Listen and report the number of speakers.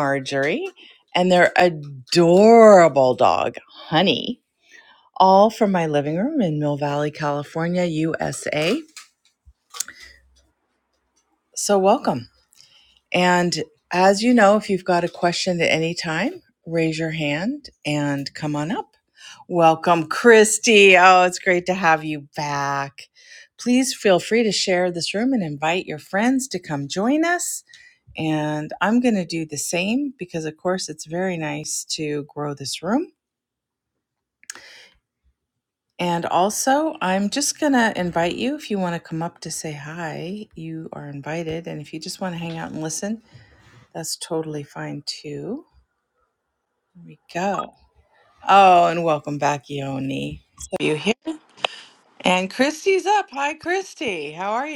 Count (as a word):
one